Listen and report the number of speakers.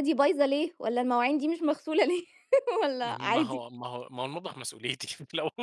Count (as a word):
two